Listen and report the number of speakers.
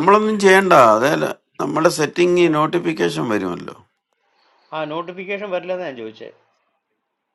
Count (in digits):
2